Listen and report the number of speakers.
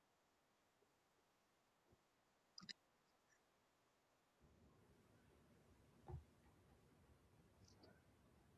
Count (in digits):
0